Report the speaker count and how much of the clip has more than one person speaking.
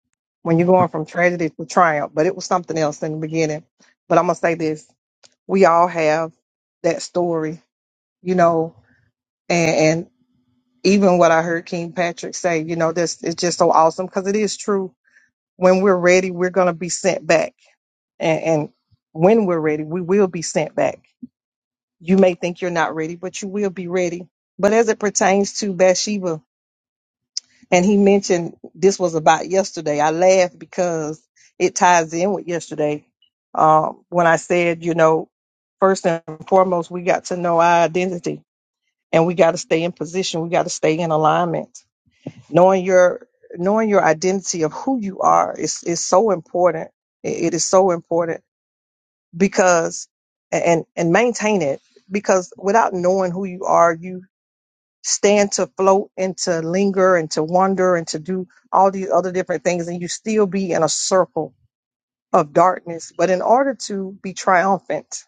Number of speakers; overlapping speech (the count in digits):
1, no overlap